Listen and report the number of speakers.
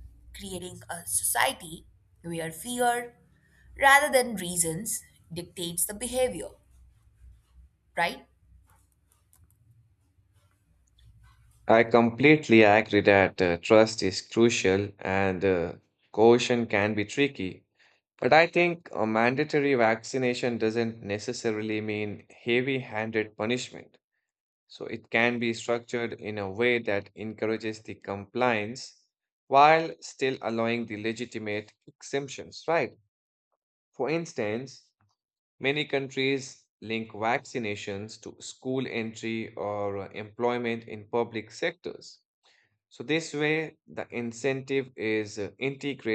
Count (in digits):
2